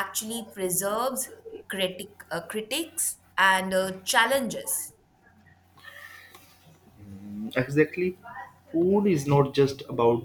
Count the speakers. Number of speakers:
2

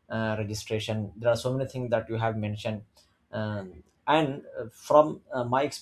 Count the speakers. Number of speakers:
1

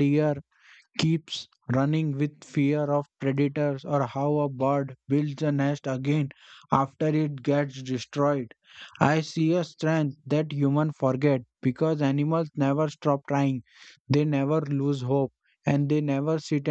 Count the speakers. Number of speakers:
1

